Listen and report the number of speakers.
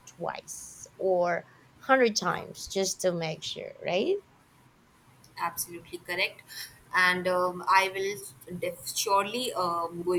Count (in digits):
2